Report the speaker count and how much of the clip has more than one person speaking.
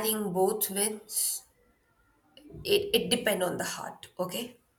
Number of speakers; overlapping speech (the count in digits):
1, no overlap